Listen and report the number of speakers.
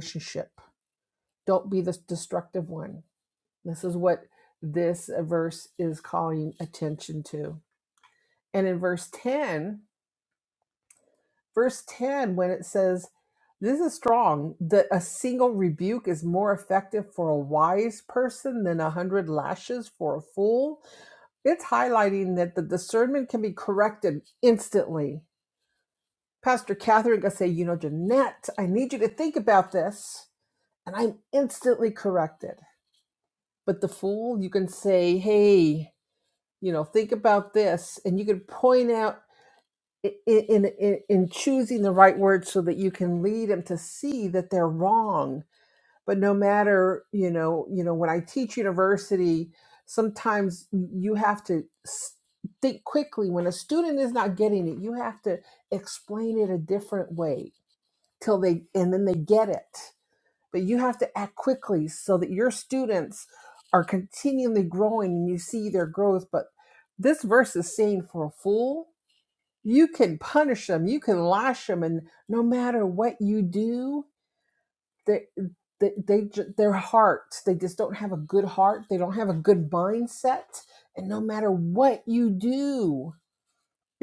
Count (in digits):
1